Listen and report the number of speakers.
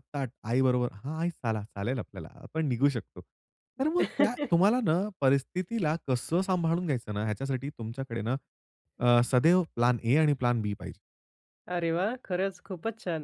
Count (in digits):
2